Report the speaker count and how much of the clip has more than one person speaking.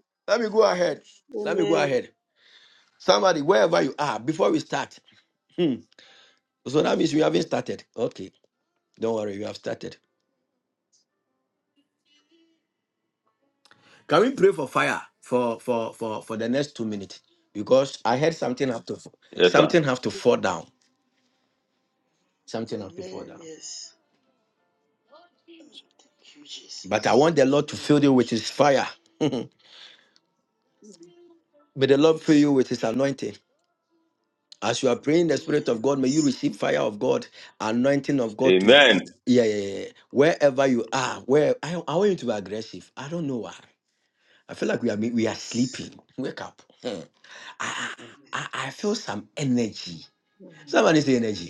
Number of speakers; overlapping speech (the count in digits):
3, about 5%